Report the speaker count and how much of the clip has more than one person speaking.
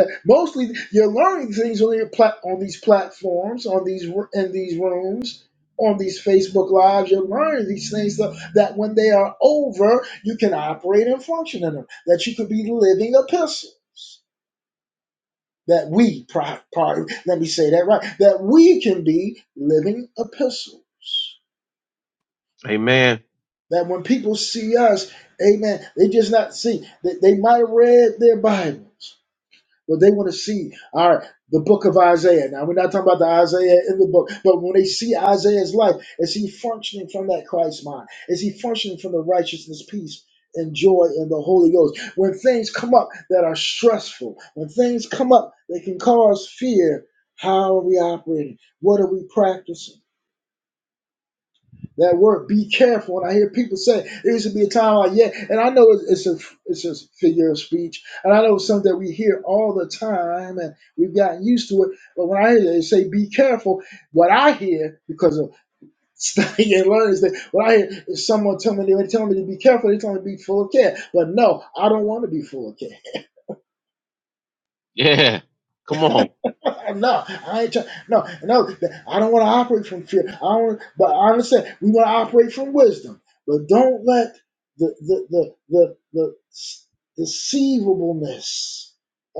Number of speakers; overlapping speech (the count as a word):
two, no overlap